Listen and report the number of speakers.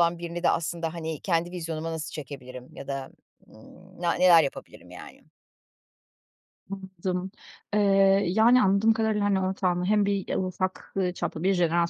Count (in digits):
2